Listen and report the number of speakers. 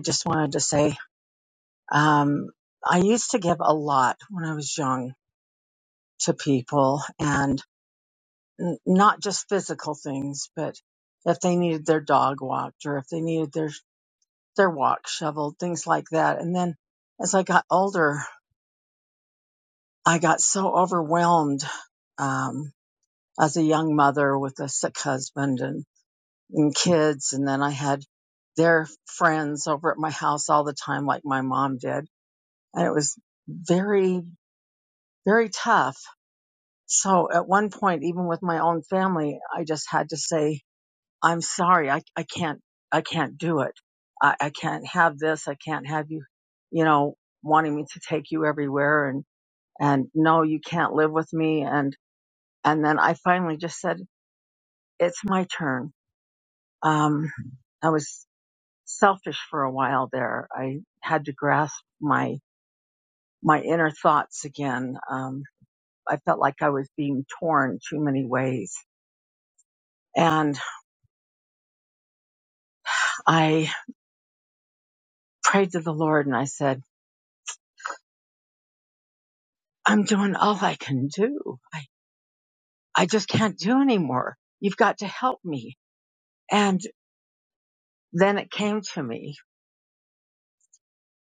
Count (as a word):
one